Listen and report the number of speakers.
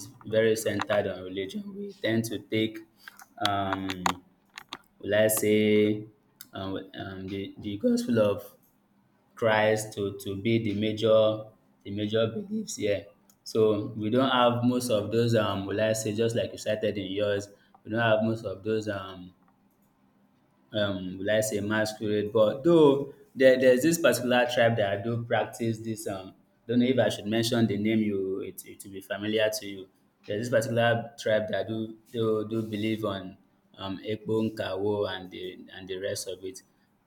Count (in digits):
1